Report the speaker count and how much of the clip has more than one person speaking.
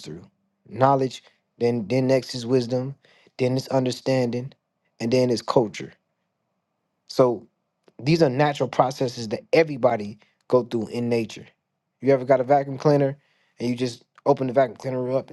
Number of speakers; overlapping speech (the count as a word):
one, no overlap